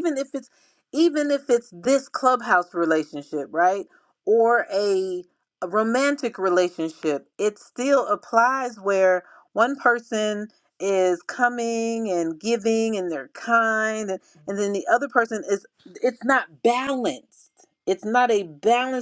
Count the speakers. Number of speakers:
1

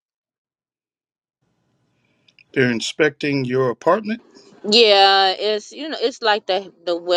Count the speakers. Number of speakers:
2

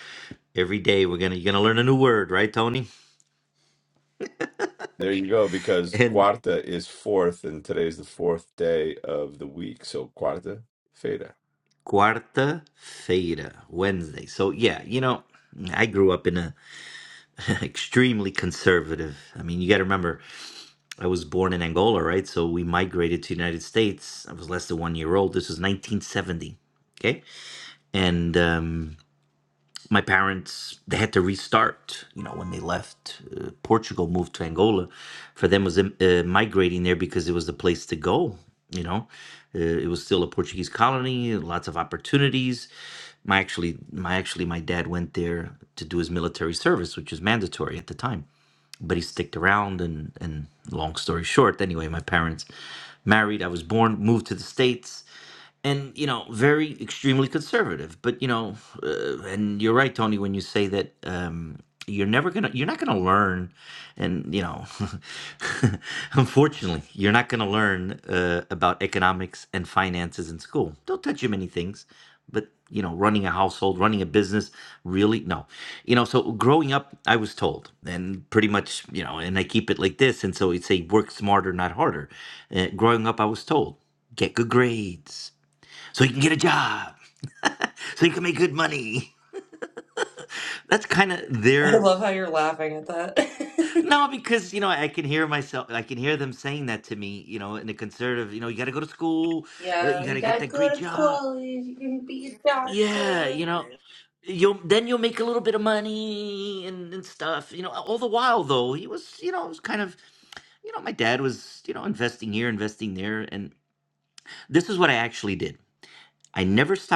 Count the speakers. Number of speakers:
3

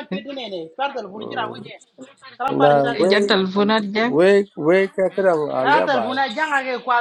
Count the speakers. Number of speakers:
3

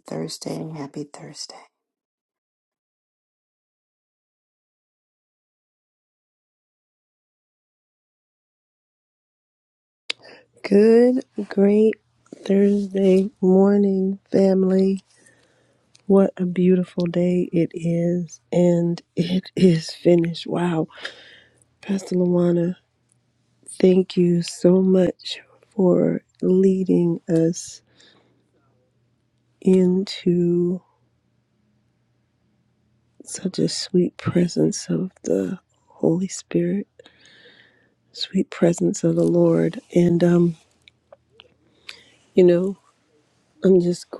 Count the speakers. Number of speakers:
2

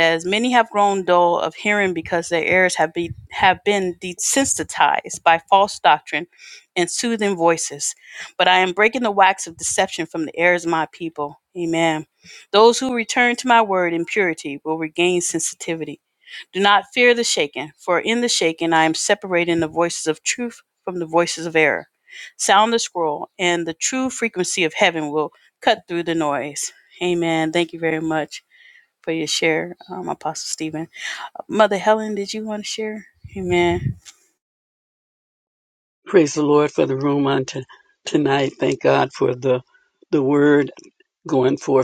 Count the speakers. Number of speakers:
2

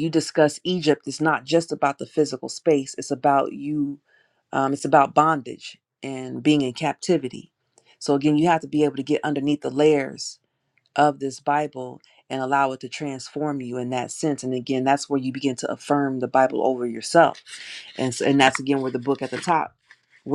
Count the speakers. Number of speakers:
1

